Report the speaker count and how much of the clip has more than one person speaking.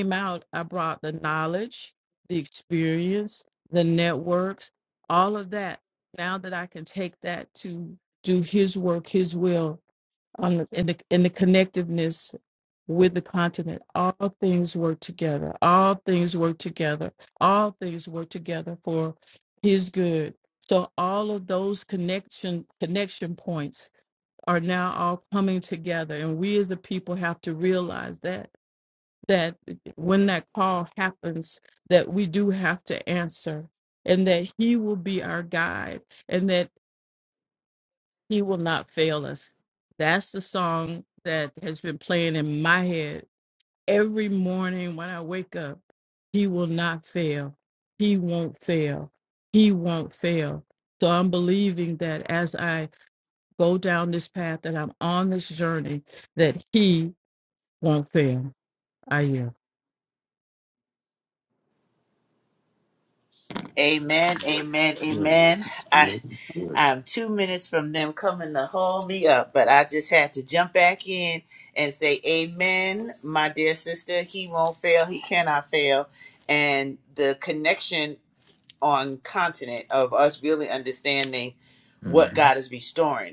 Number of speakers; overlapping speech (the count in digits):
3, about 2%